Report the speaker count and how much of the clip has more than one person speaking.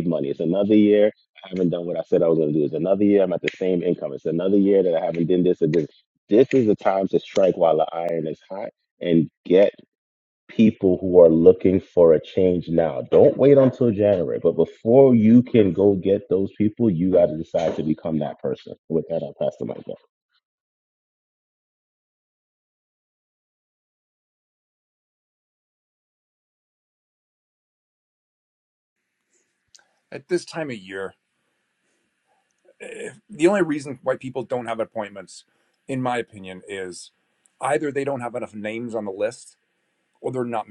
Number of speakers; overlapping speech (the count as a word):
two, no overlap